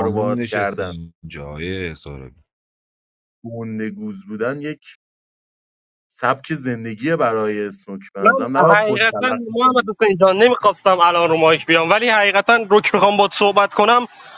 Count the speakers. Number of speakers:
3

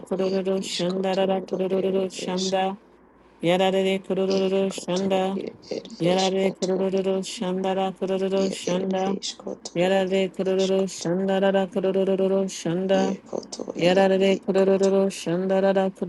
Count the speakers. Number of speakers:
2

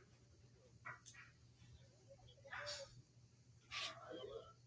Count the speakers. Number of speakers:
0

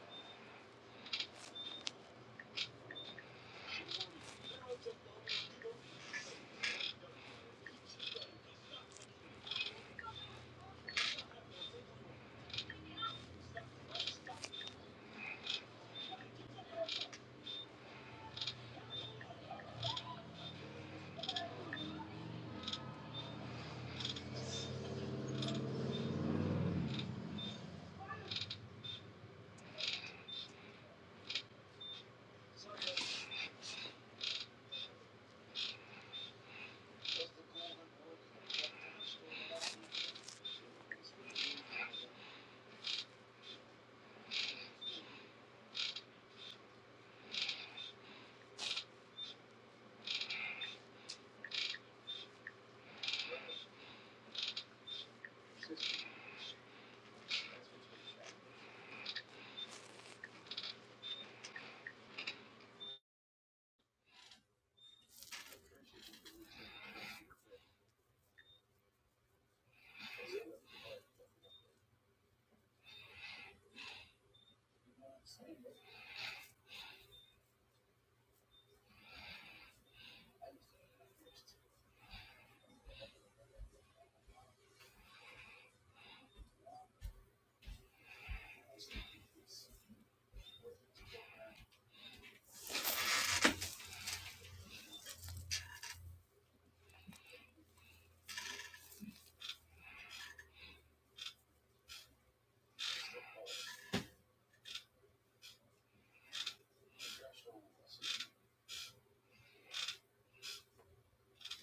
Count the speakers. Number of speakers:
0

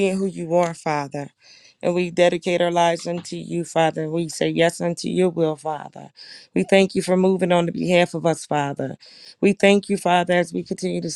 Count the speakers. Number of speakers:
1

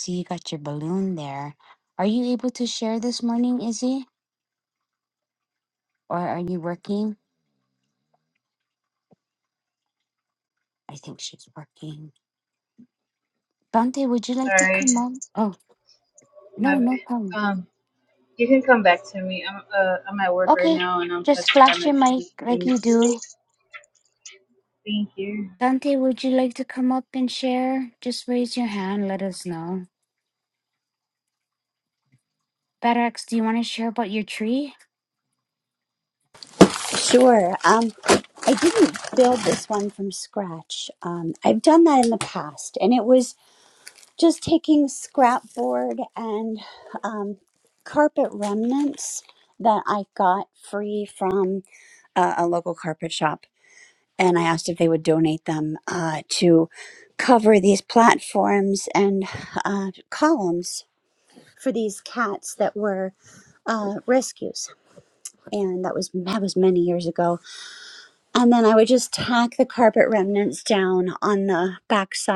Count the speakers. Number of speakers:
3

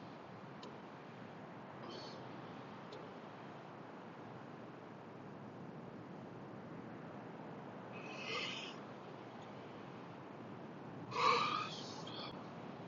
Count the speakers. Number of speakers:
0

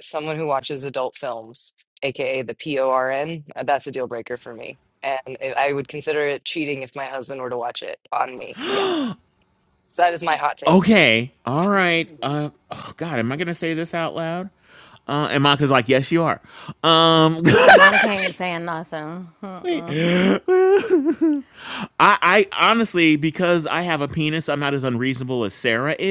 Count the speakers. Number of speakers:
3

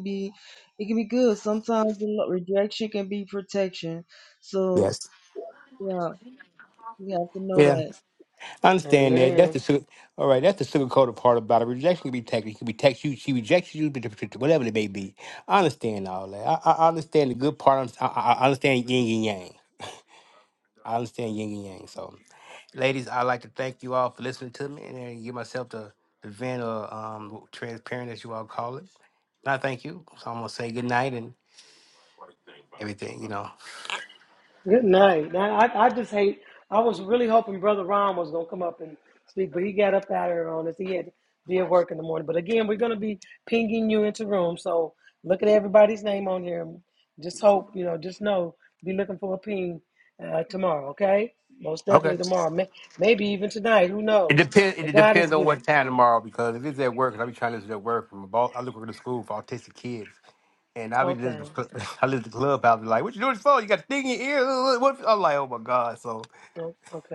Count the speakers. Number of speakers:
3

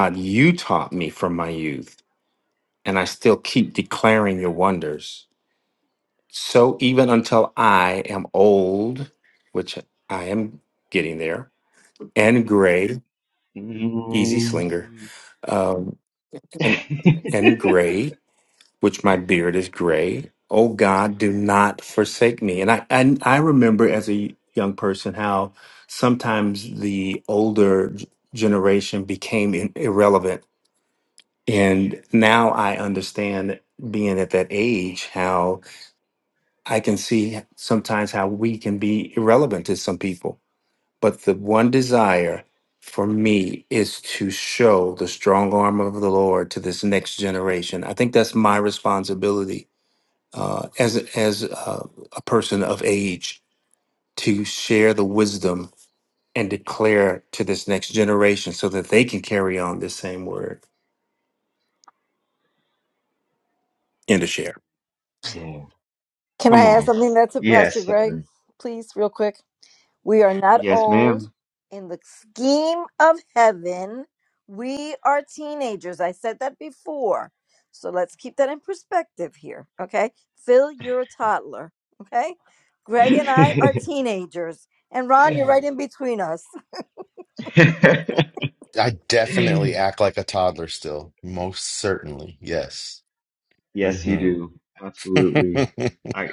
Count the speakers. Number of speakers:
4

